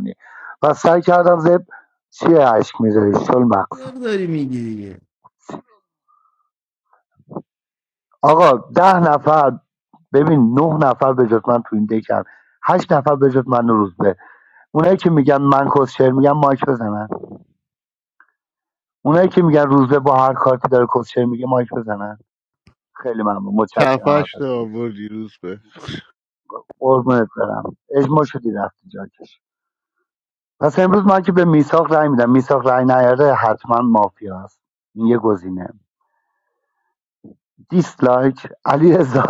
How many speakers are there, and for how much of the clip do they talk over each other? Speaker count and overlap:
3, about 2%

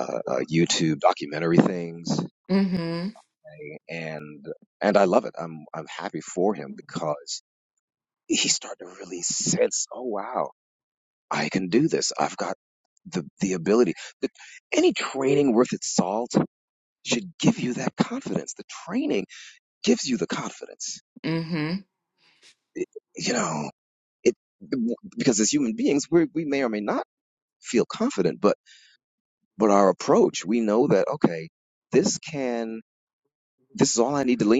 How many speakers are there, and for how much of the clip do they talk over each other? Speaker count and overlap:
2, no overlap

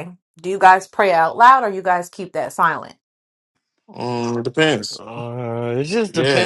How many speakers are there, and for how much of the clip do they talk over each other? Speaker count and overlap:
3, about 6%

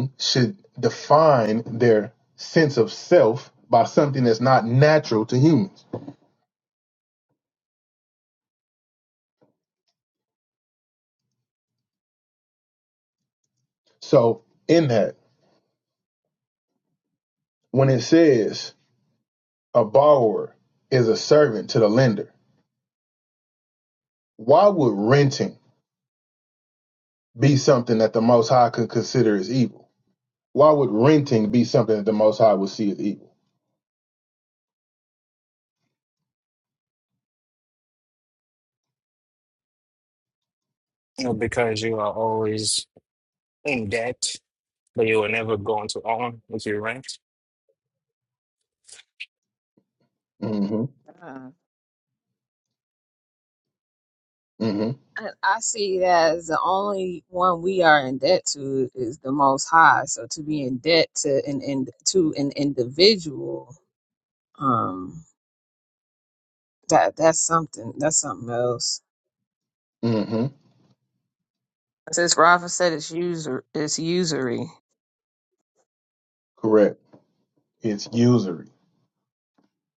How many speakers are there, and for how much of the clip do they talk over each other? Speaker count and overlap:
3, no overlap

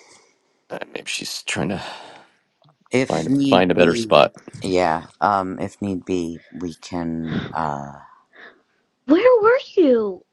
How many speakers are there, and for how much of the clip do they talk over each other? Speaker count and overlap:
3, about 10%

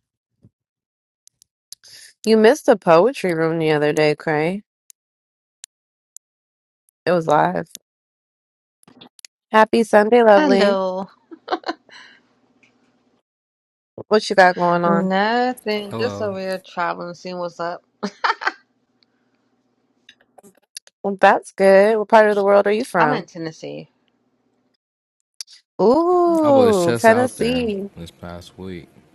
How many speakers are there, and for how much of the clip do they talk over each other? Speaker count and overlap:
3, about 10%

